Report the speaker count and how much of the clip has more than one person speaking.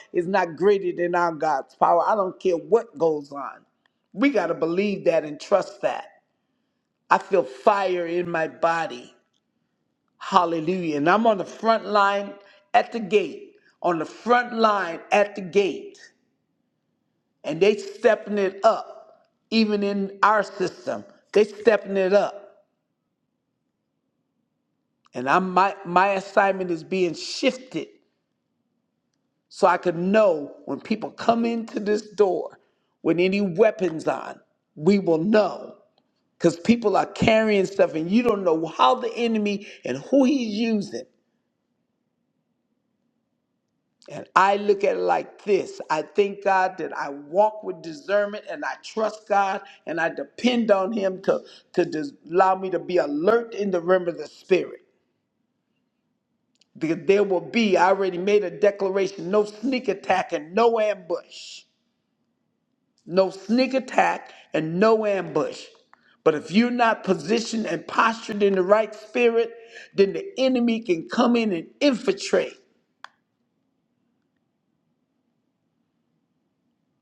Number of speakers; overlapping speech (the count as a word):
one, no overlap